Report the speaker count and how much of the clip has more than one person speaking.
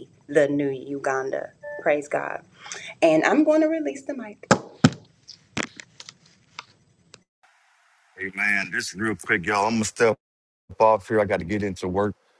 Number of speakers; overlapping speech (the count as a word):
two, no overlap